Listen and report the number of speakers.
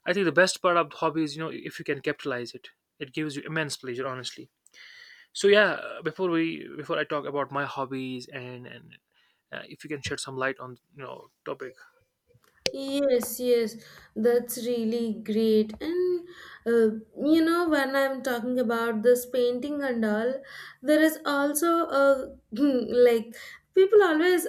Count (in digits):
2